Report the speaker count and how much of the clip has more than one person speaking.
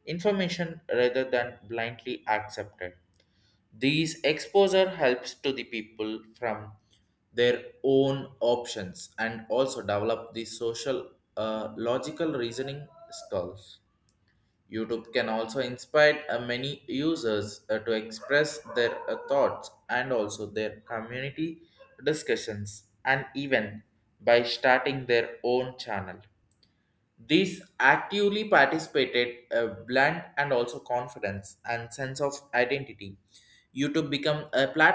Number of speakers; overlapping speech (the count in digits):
1, no overlap